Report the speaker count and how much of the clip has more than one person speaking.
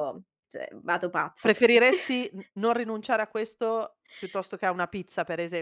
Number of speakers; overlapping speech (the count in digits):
2, about 4%